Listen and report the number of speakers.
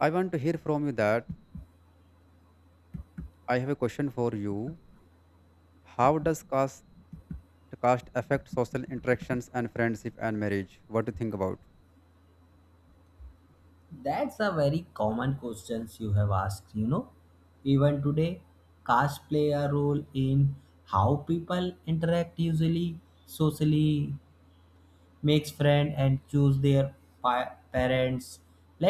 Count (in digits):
2